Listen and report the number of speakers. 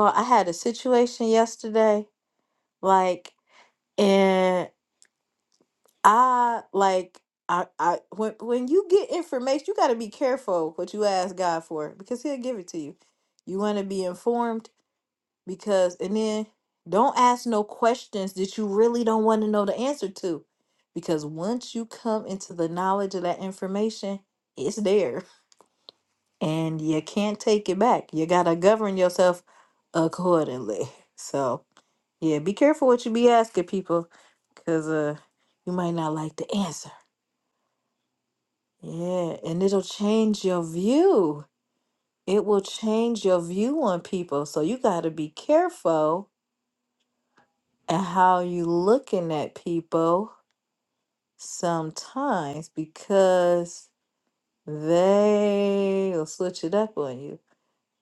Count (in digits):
1